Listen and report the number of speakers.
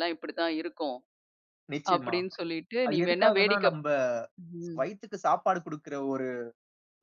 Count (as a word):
two